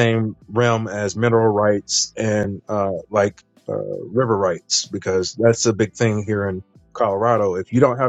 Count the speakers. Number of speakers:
one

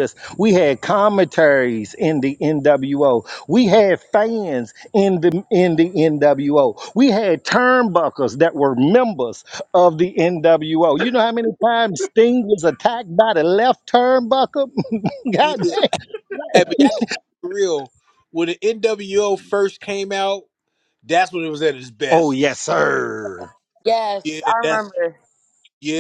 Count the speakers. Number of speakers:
three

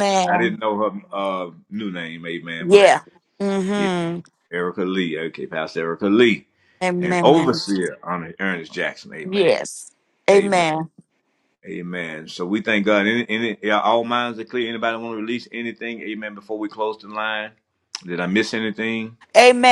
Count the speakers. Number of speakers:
two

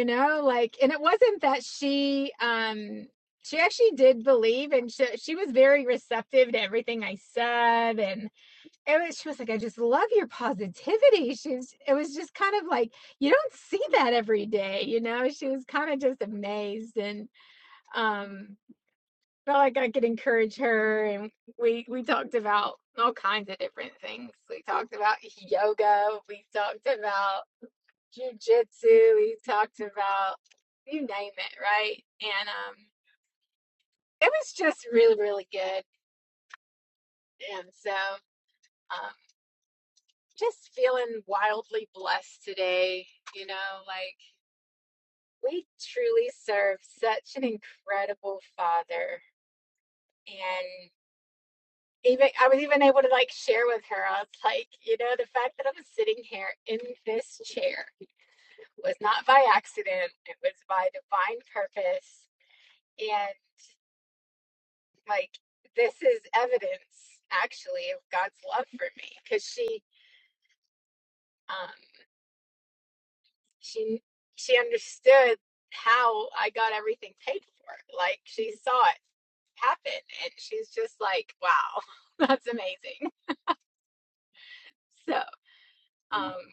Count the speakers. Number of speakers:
one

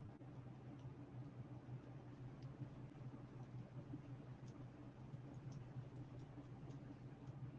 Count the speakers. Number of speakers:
zero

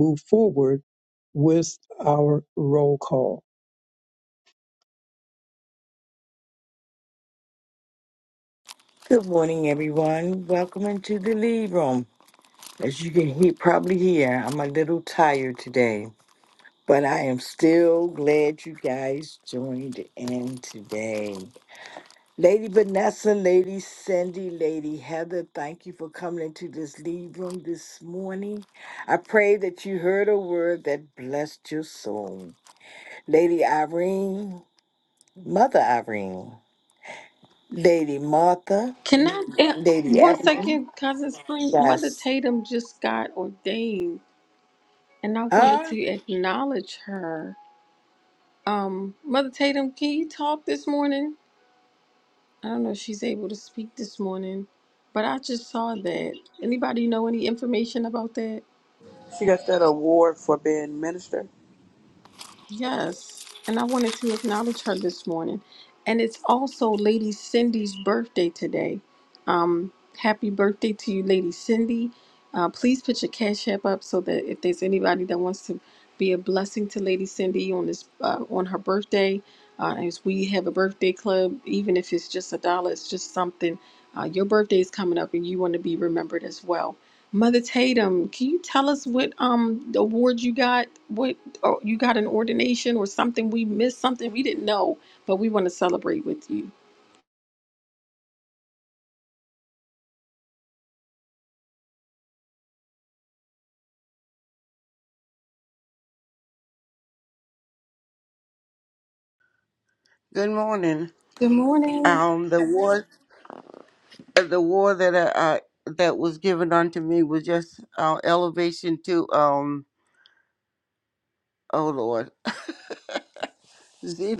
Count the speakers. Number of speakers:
five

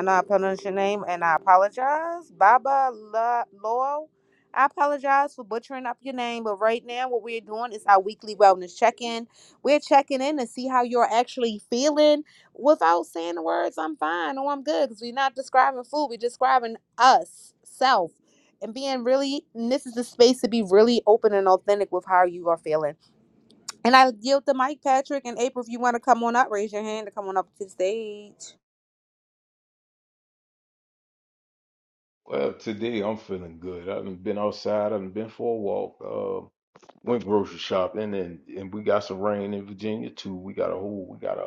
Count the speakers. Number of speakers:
two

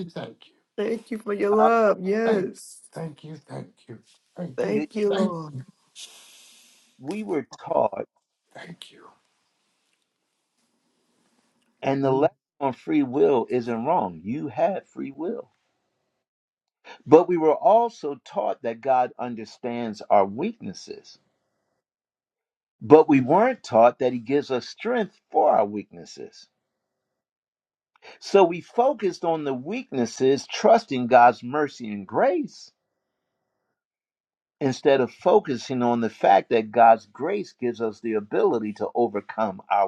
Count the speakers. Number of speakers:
three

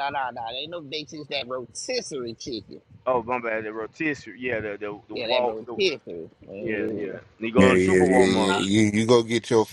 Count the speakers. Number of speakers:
three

